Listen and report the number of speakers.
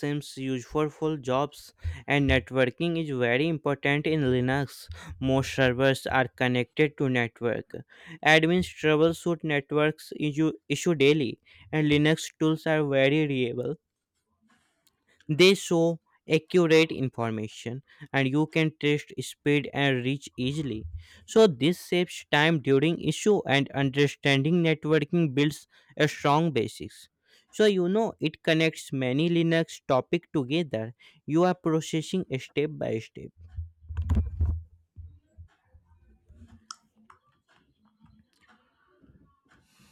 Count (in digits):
1